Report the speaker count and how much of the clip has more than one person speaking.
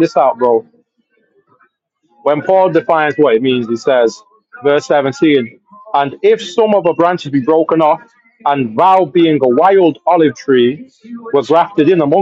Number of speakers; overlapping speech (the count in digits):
1, no overlap